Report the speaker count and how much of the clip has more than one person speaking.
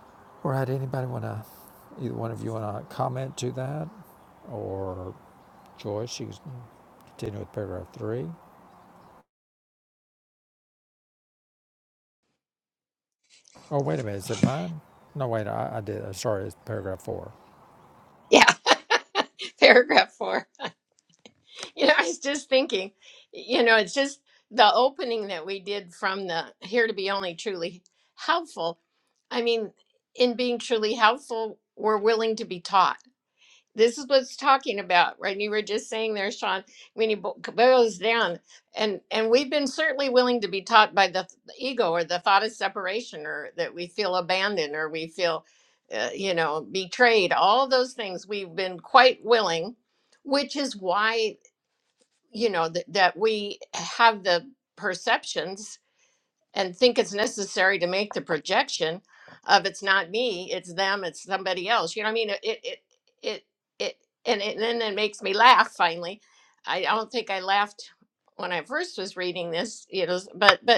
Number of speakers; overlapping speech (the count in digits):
2, no overlap